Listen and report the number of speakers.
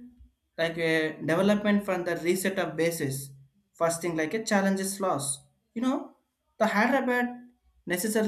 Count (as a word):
one